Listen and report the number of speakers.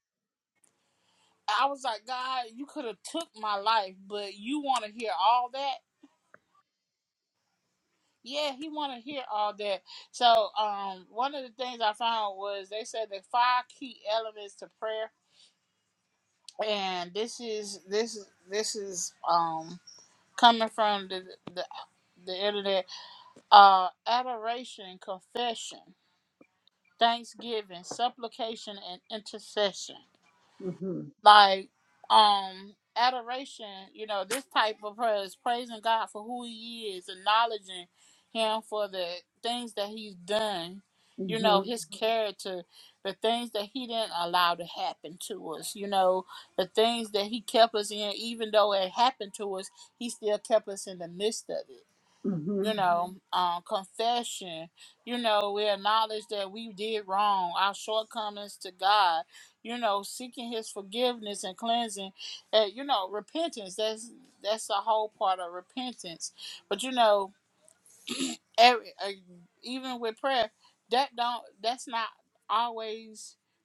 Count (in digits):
2